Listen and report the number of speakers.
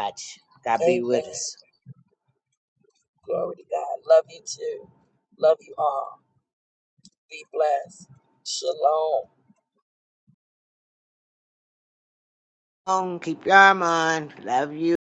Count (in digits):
2